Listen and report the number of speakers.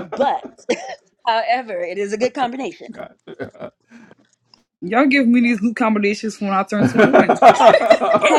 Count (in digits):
3